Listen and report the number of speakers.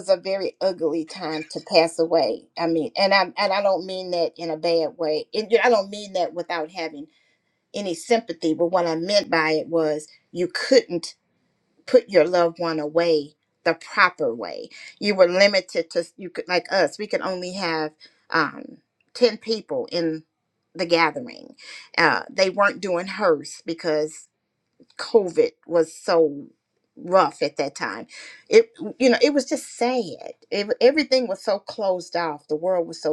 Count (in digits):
1